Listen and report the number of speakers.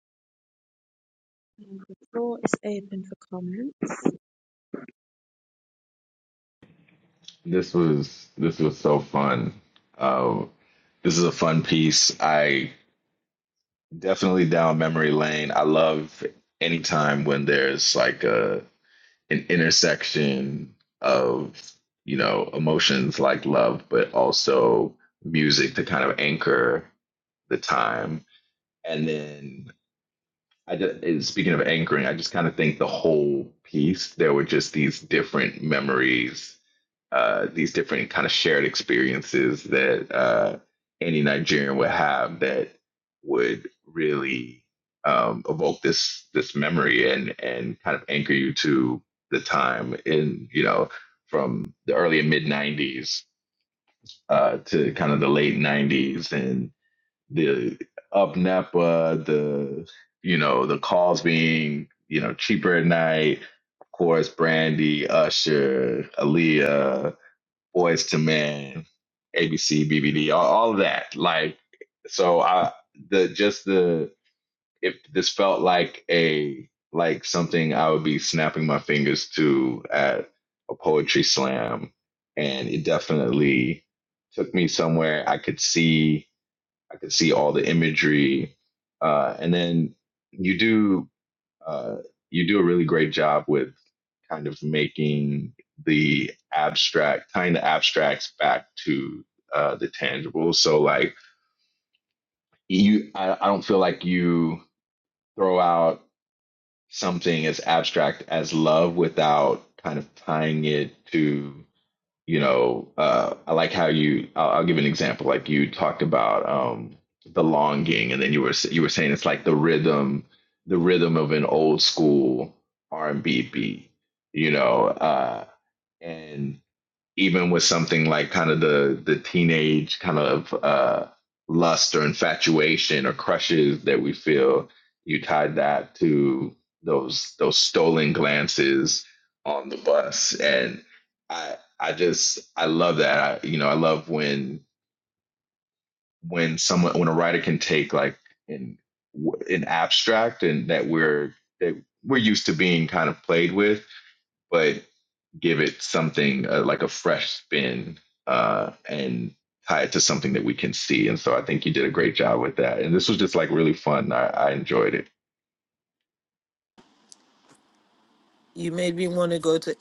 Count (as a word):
three